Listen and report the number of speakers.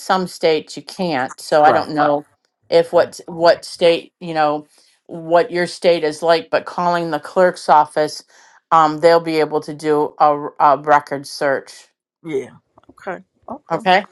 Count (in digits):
2